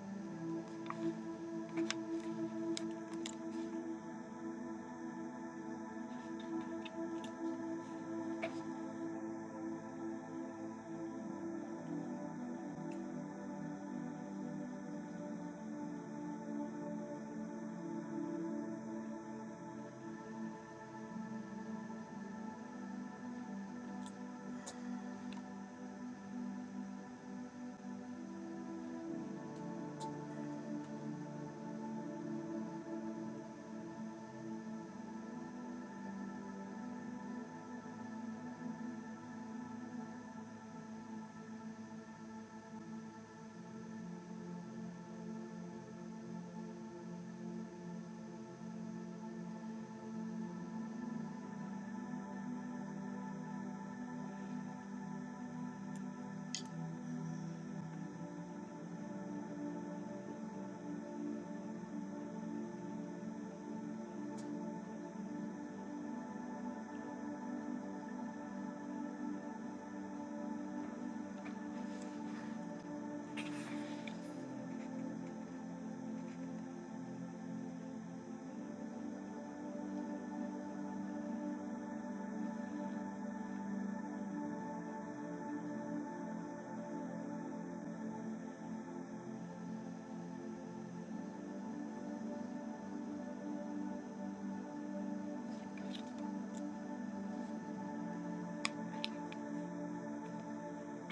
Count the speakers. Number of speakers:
0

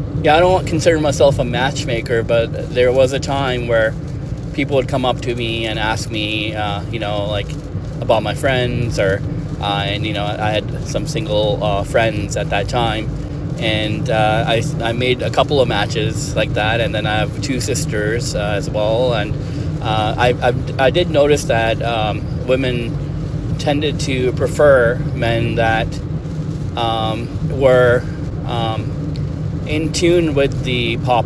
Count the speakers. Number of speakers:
1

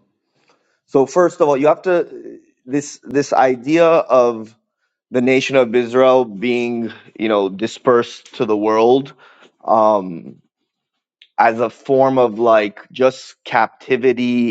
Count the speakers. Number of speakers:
1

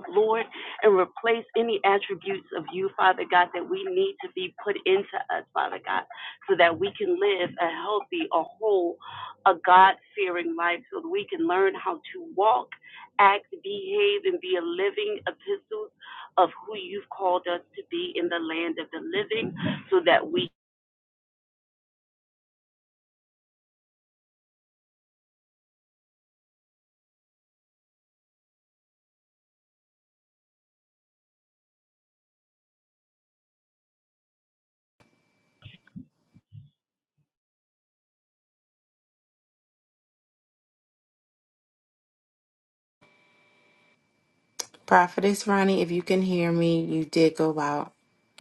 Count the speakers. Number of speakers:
2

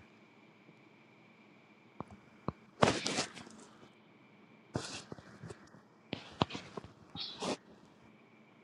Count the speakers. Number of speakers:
0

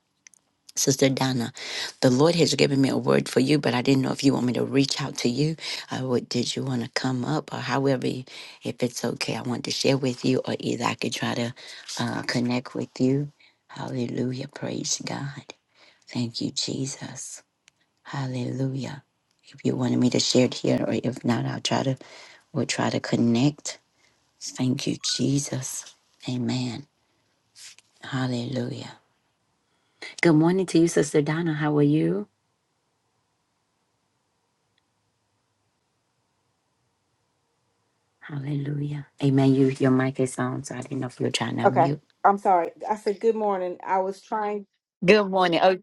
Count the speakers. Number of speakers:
2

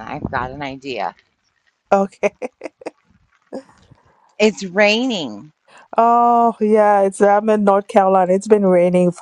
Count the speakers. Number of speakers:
2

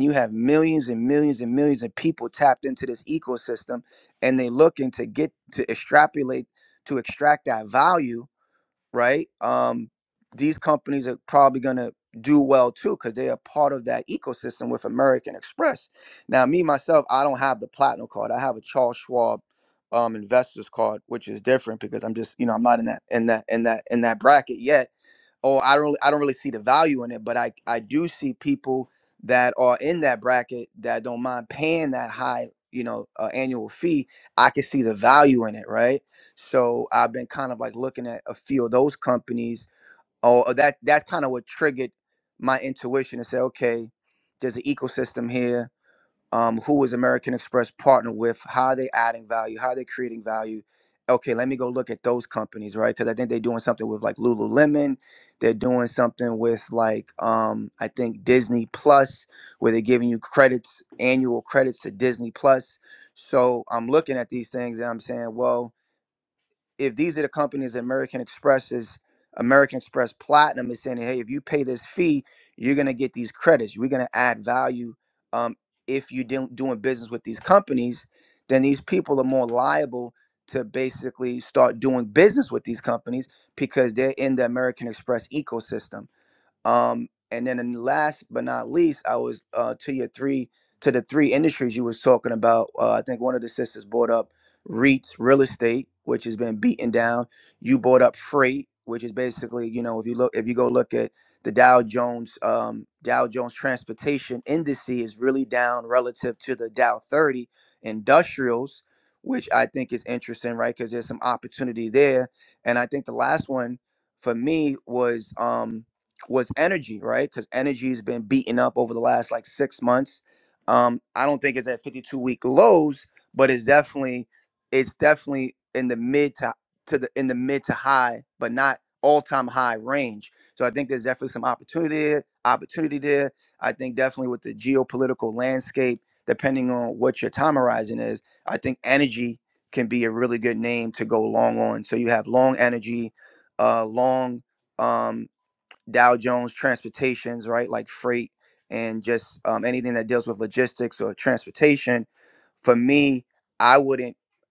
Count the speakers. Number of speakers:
1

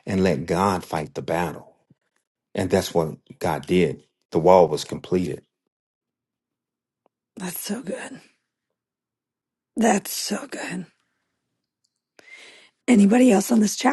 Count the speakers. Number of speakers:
2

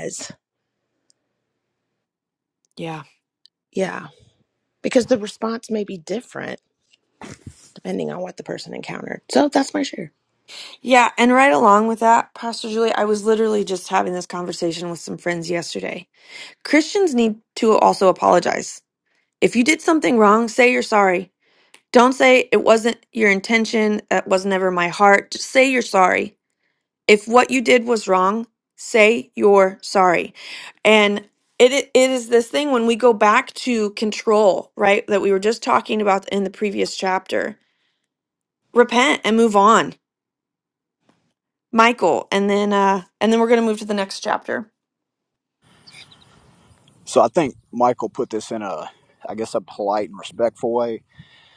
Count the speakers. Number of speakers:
3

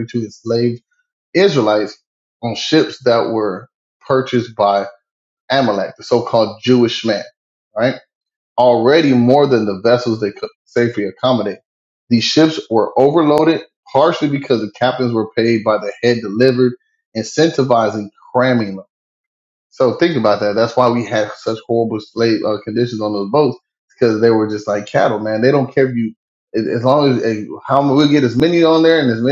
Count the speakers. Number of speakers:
1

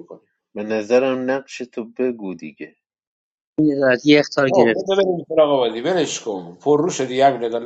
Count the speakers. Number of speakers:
3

